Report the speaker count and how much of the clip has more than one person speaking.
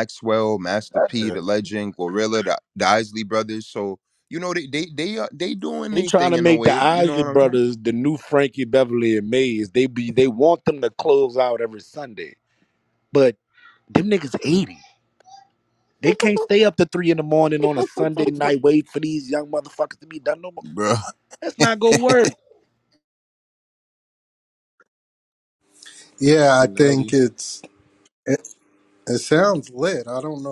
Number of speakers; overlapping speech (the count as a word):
three, about 7%